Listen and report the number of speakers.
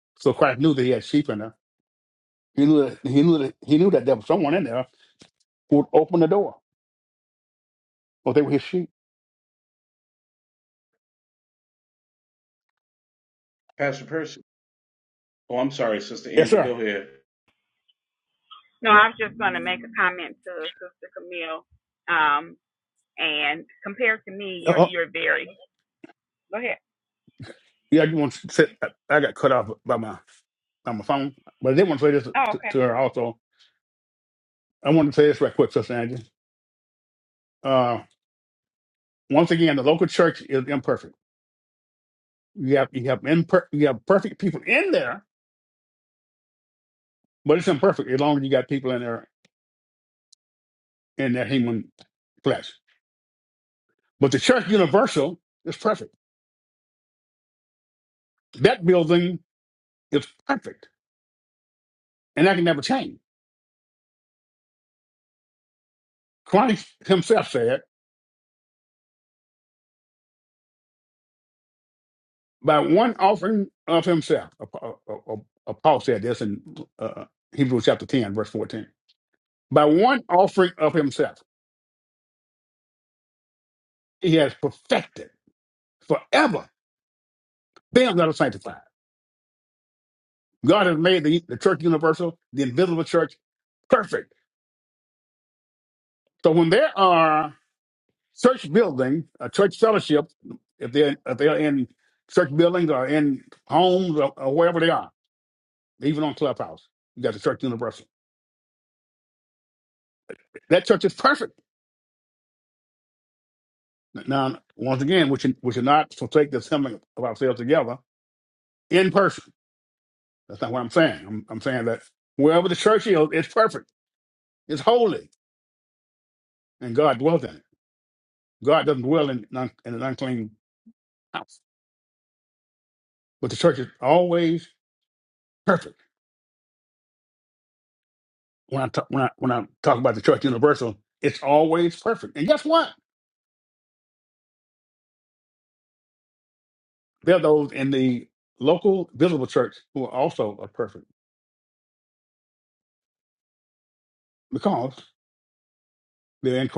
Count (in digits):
3